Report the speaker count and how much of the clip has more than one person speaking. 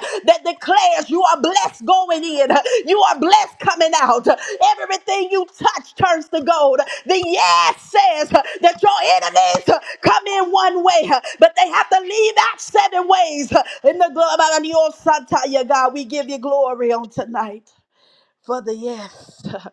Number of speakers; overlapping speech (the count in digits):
1, no overlap